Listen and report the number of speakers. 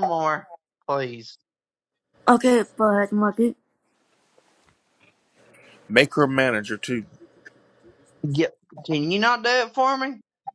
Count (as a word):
three